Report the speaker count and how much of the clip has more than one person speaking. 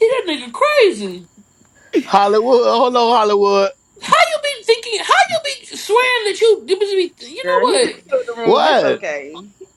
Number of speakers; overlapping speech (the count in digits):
3, about 10%